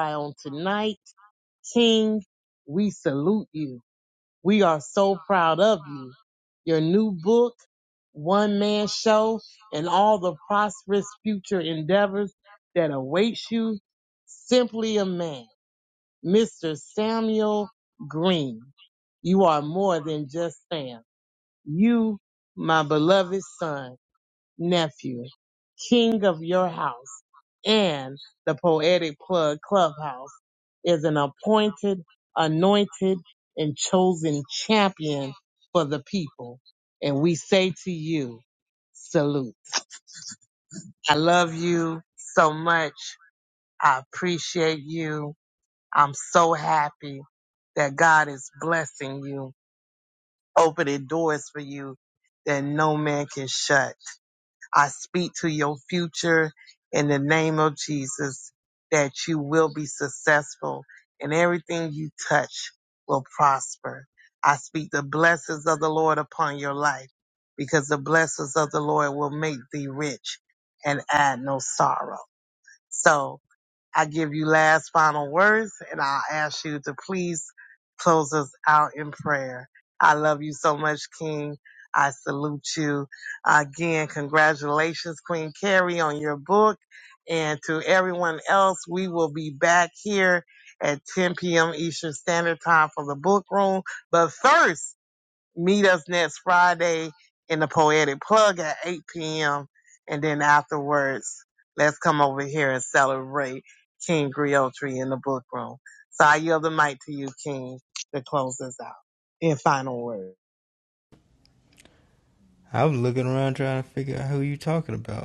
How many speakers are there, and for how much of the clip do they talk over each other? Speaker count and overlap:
two, no overlap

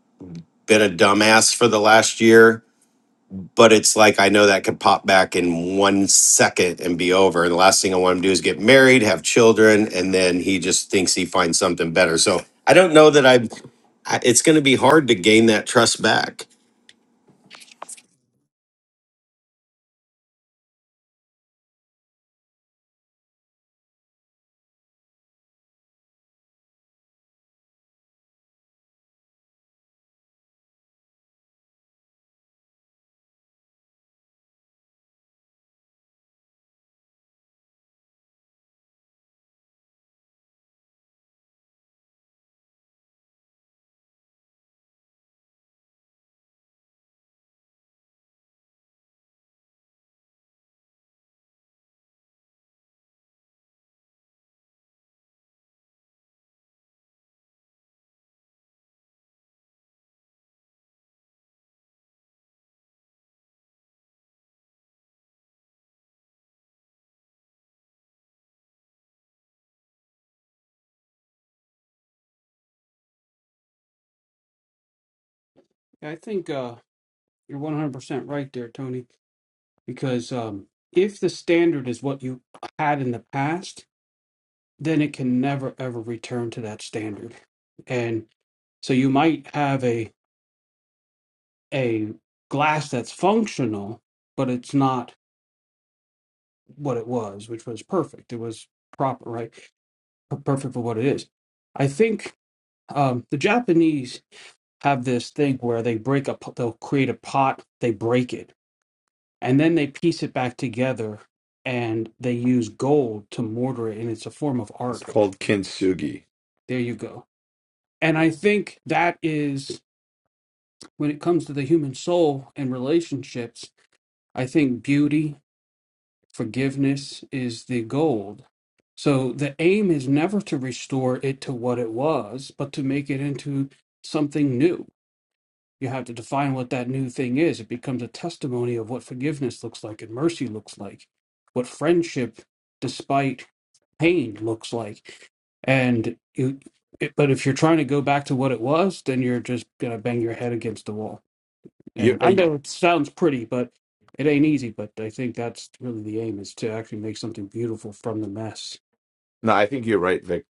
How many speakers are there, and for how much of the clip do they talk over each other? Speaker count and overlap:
three, under 1%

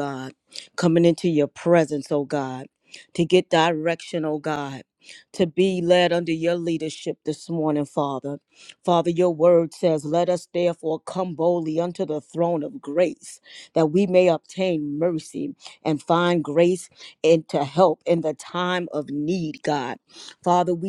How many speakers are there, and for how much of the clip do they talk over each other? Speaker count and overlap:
one, no overlap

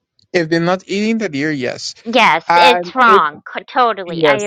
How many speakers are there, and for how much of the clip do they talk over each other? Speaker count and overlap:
two, about 24%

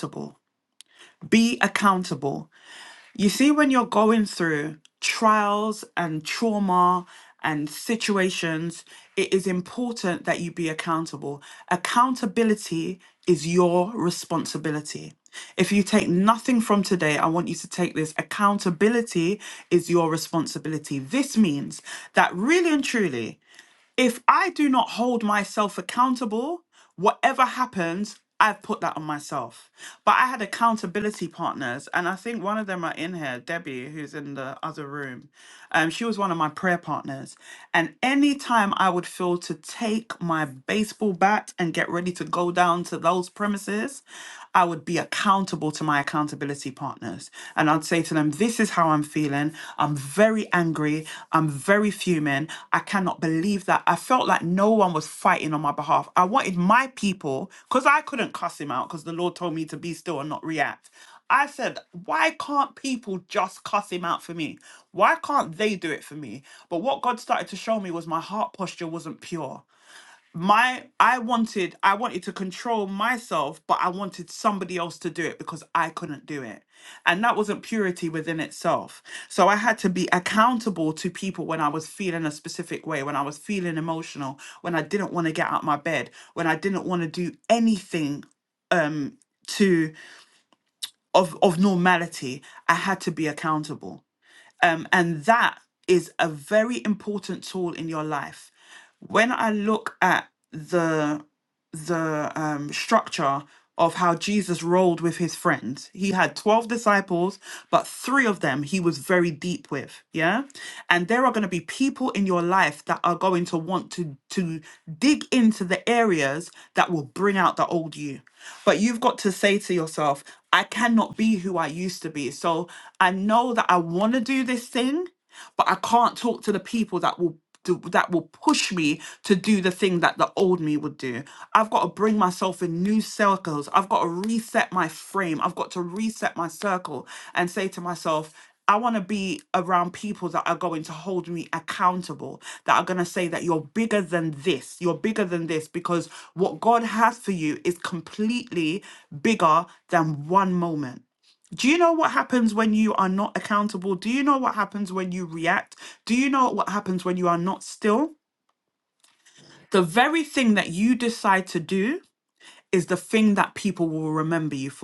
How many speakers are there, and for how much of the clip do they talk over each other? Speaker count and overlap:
one, no overlap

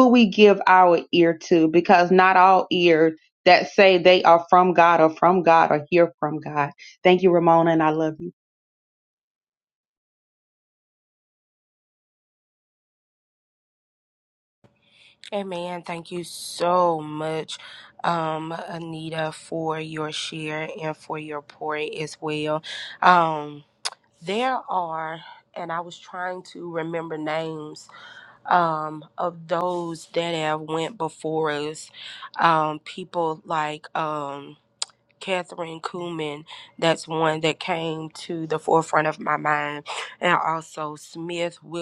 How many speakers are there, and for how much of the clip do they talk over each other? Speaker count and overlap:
two, no overlap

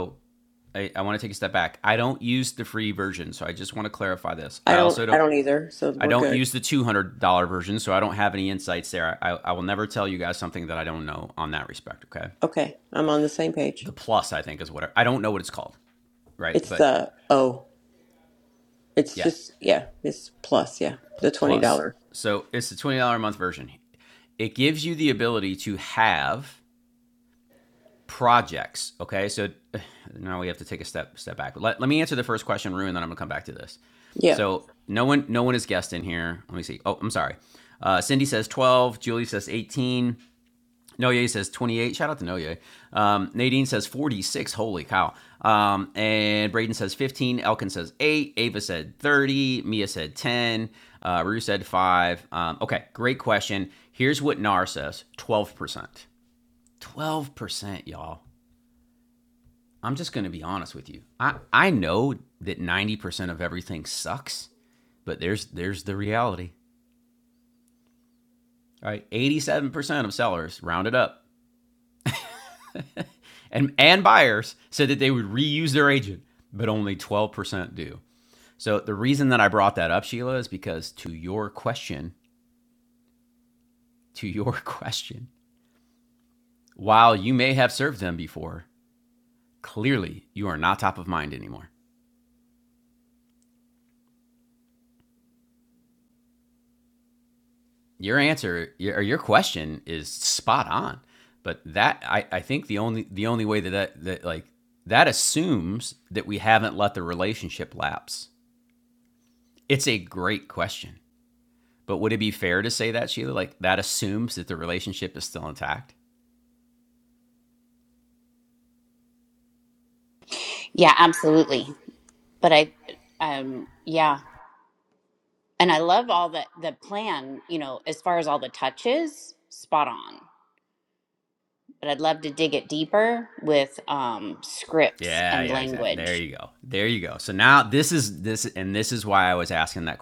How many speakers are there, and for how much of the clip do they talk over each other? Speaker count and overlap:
three, about 2%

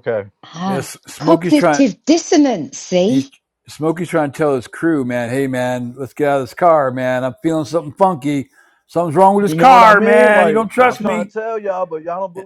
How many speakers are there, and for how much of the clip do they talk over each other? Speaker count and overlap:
three, about 23%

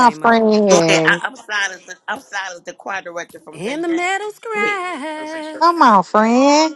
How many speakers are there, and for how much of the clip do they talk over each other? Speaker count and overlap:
three, about 24%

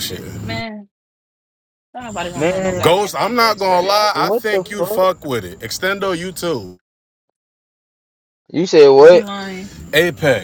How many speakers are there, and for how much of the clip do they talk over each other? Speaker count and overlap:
three, about 24%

